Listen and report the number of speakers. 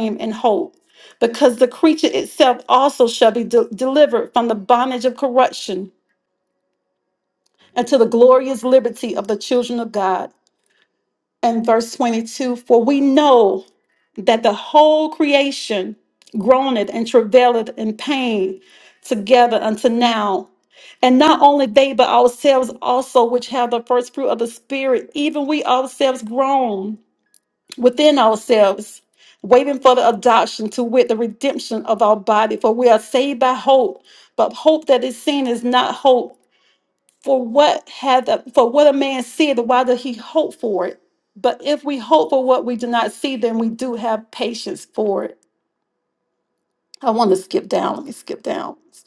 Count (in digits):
1